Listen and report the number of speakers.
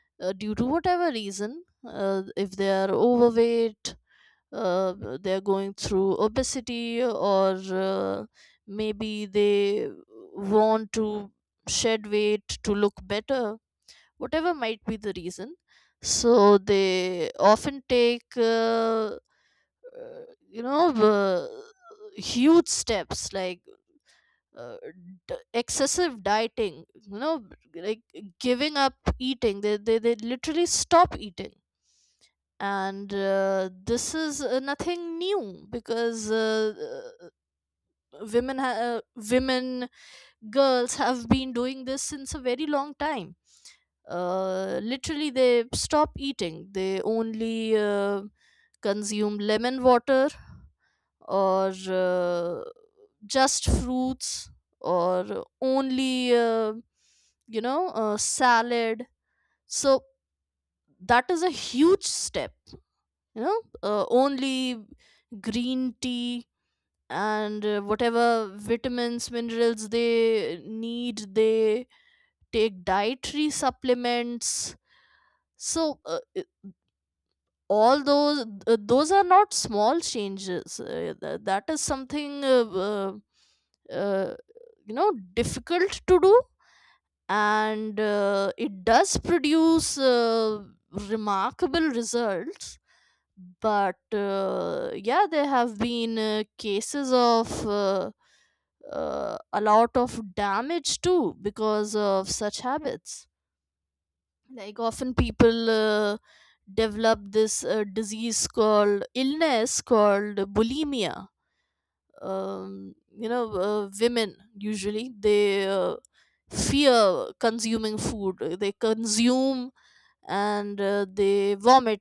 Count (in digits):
1